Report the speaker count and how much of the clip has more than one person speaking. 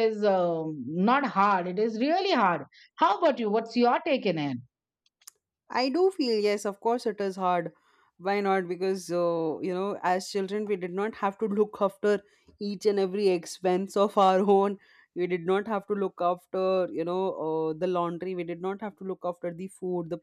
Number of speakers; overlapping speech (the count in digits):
2, no overlap